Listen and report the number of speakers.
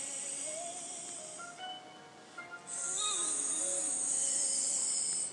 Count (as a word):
zero